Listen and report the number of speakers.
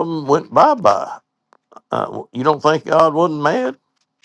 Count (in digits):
1